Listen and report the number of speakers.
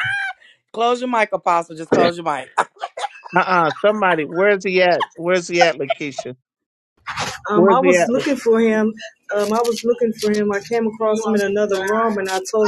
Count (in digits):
3